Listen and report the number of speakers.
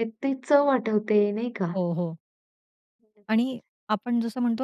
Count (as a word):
two